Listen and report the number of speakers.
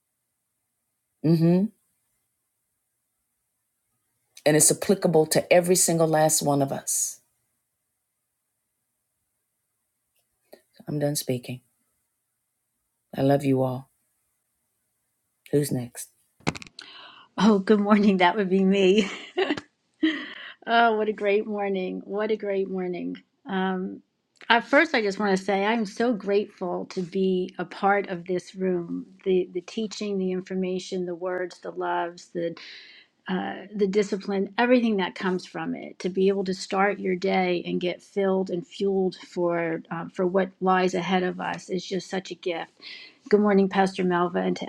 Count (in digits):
2